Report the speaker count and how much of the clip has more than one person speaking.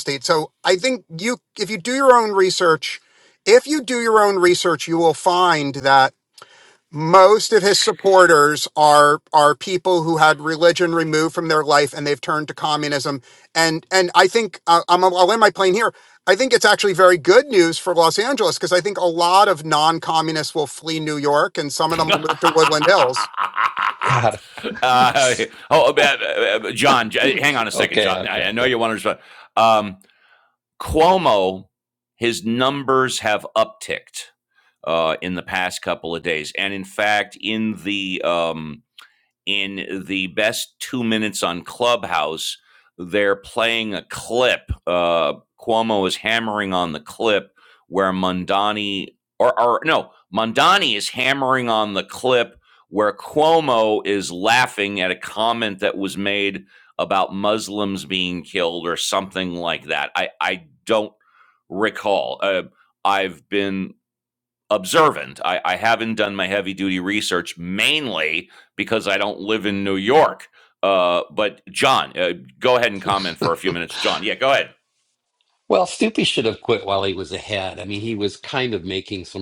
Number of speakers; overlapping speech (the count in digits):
3, about 3%